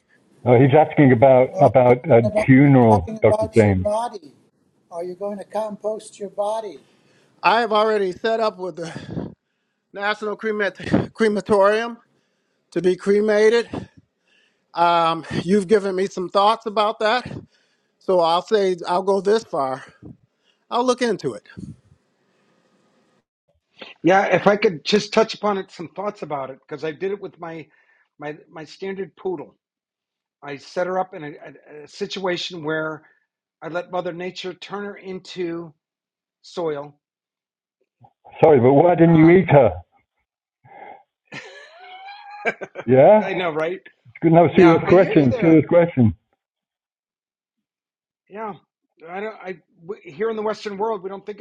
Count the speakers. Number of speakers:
four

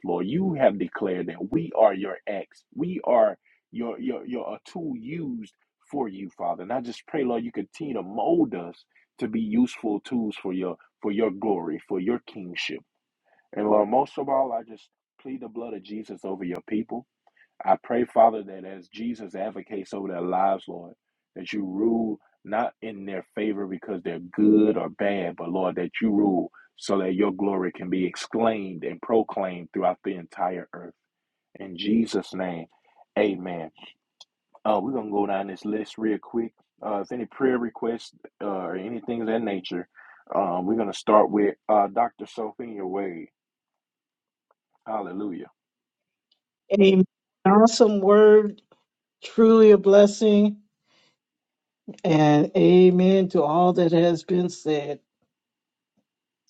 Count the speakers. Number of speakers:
two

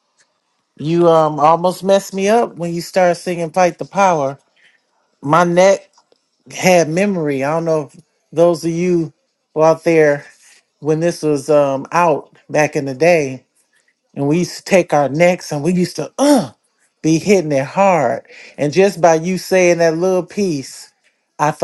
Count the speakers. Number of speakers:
one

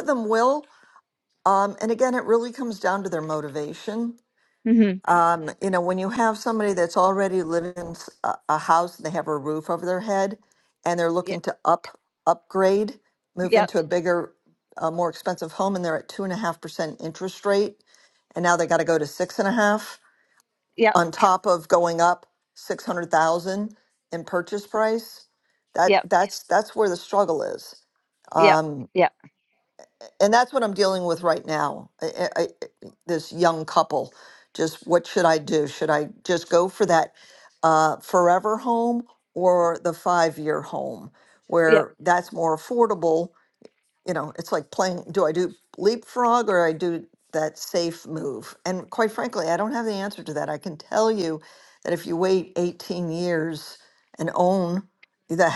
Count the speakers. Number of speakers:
two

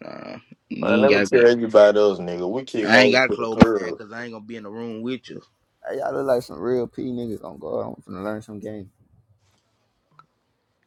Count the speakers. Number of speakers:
three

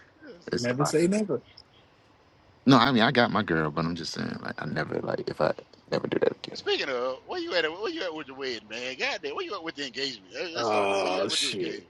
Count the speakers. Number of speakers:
three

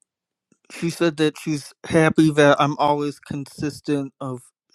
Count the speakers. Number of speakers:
one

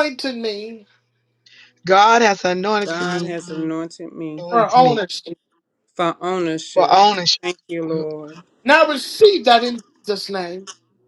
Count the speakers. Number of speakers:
three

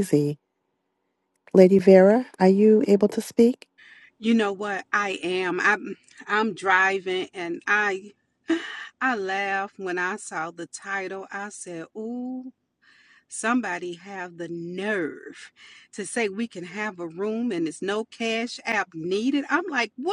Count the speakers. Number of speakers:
two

